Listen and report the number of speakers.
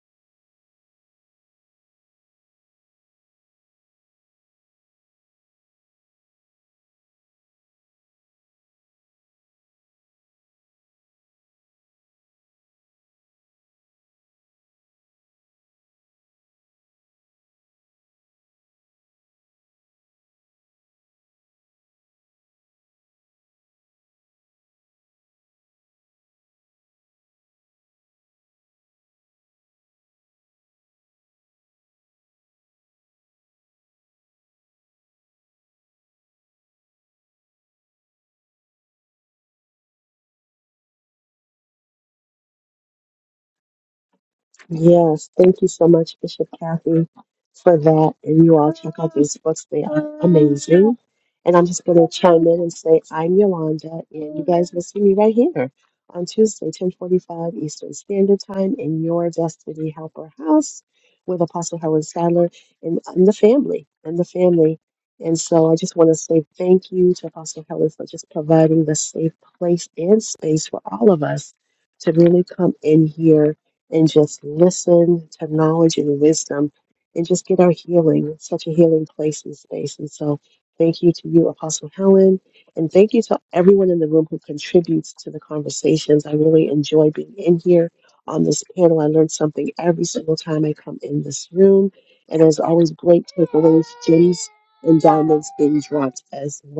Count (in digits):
1